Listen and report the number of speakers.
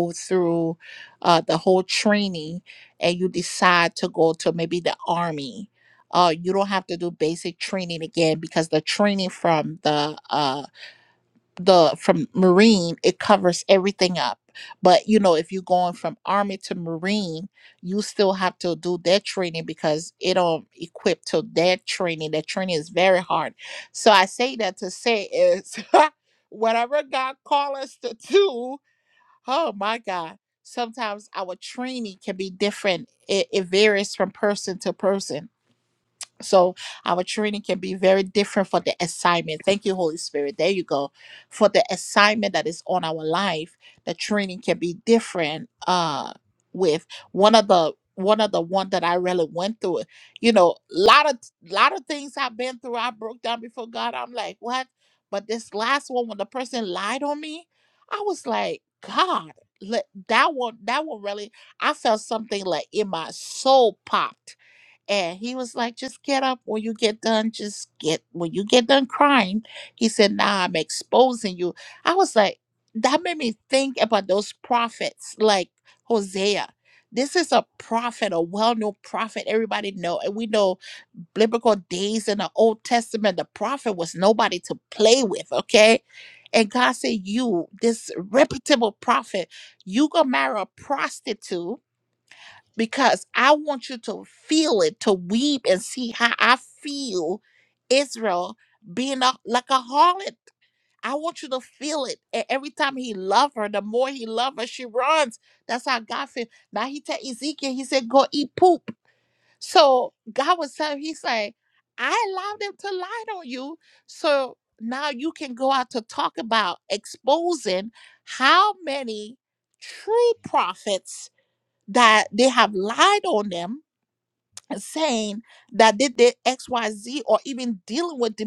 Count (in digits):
1